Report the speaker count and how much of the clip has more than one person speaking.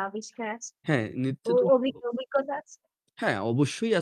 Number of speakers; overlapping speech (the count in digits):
2, about 6%